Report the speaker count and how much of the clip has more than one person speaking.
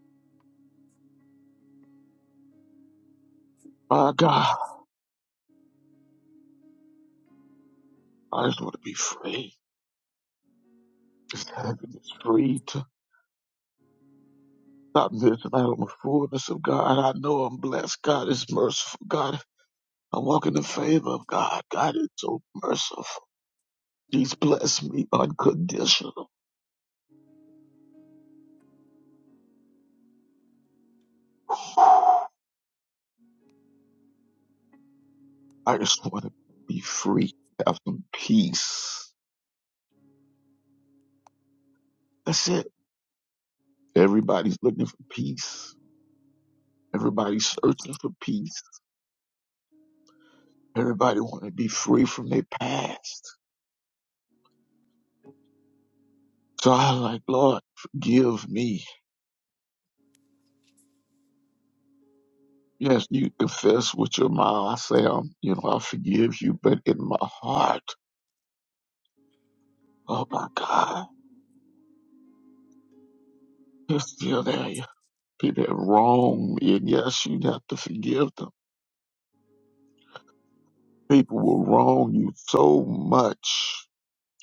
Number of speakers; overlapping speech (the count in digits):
1, no overlap